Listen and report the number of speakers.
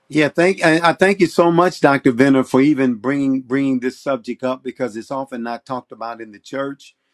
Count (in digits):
1